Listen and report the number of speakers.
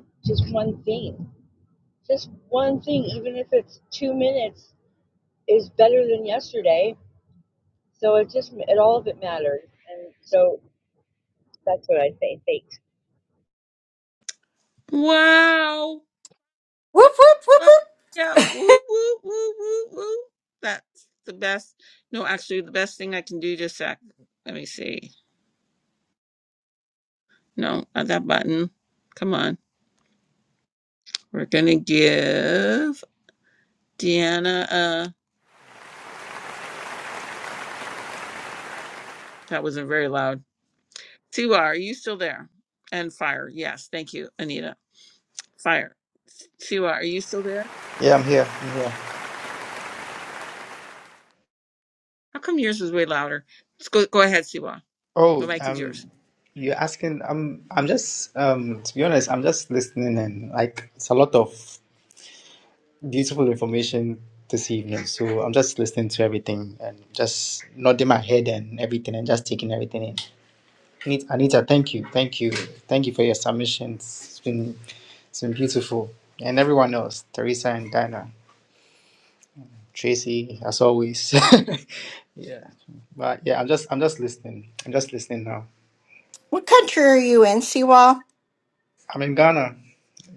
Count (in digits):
4